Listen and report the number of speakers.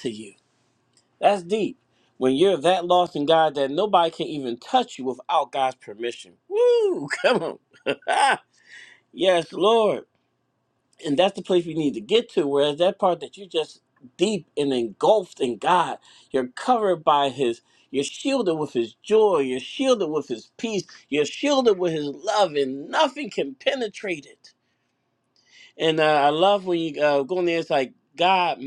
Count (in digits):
1